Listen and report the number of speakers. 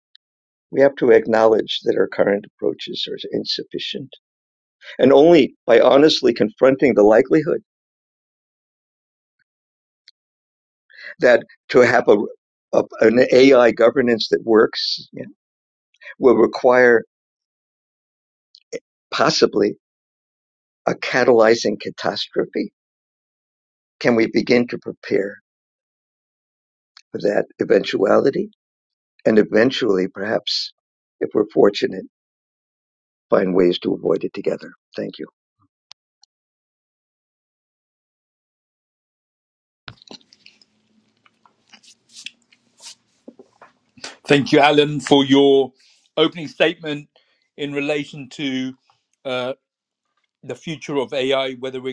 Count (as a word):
two